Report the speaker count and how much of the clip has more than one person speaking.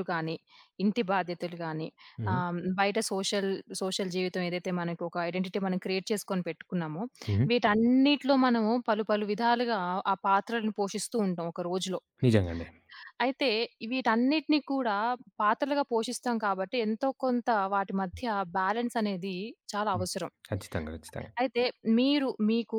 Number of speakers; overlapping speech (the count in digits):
2, about 1%